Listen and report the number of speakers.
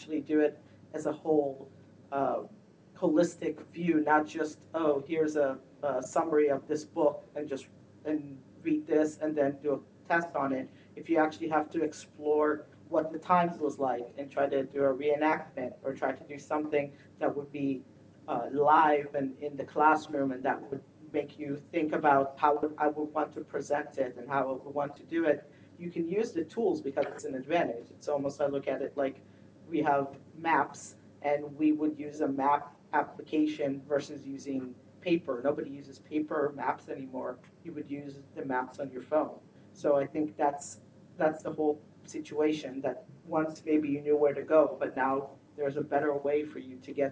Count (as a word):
one